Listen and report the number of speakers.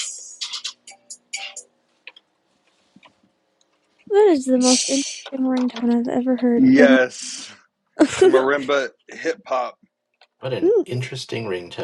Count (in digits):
3